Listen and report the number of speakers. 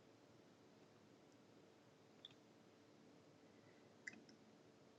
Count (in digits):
0